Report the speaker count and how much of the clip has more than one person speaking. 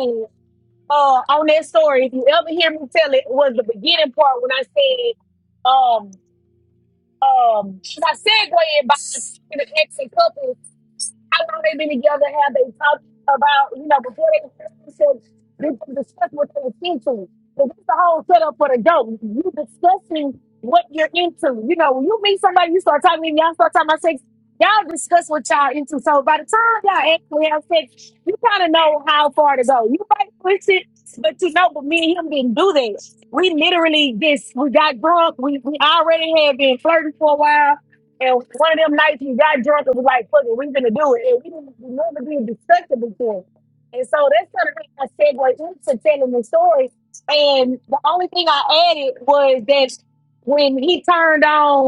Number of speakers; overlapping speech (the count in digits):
1, no overlap